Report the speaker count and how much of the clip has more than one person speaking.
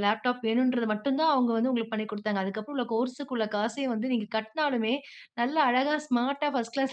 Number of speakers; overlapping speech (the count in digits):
1, no overlap